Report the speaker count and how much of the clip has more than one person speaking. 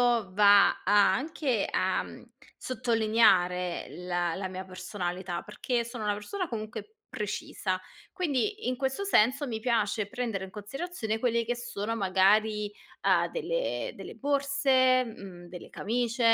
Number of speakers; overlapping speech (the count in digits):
1, no overlap